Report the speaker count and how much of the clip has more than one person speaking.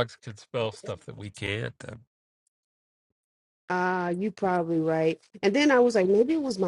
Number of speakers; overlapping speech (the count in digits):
2, no overlap